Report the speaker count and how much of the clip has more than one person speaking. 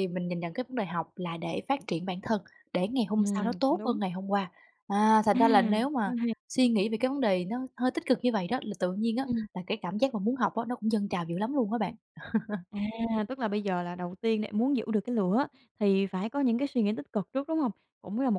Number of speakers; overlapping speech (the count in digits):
2, about 6%